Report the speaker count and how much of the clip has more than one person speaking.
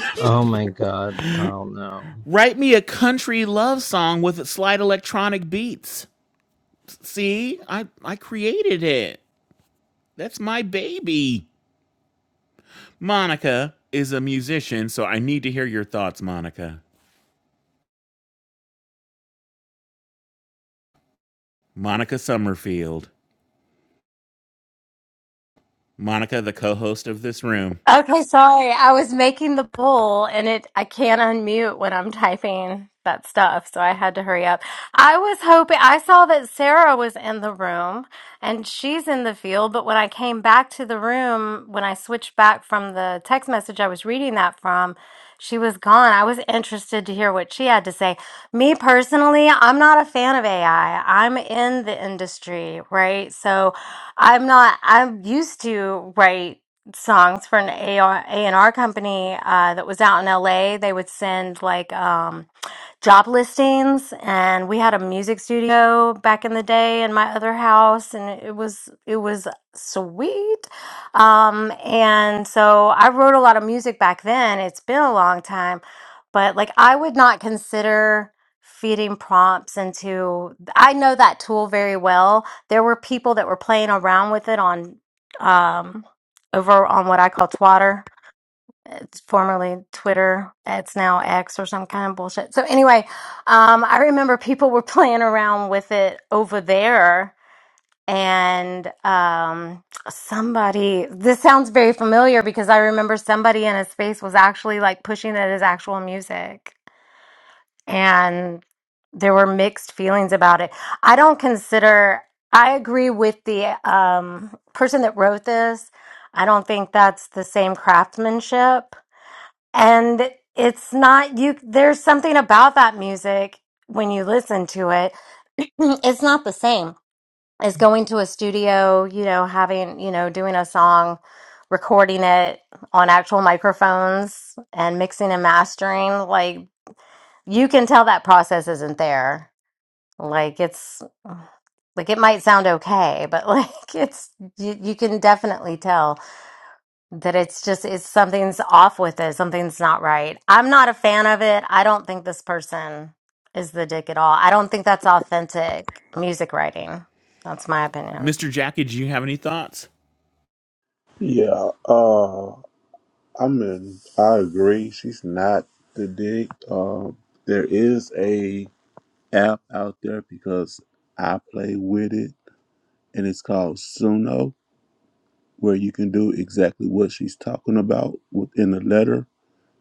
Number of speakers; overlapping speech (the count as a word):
four, under 1%